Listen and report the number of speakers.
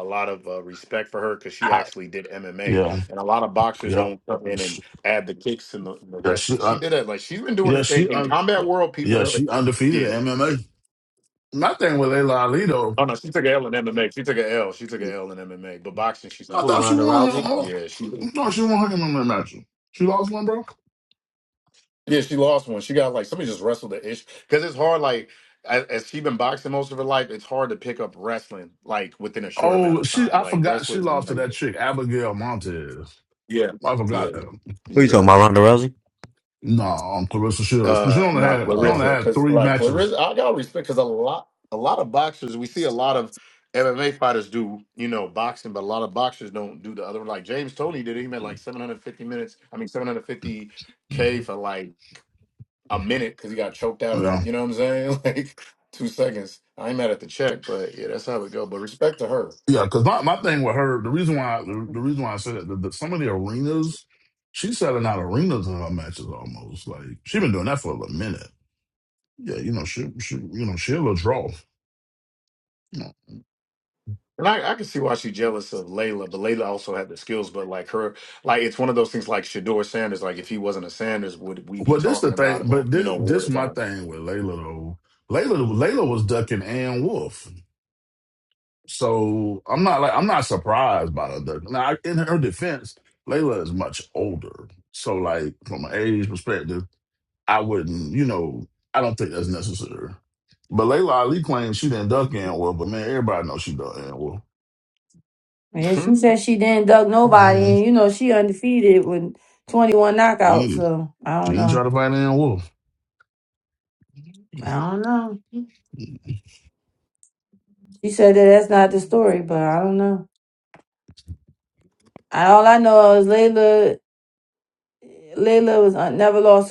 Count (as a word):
four